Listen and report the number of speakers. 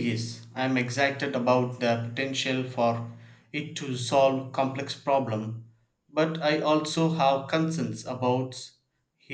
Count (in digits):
1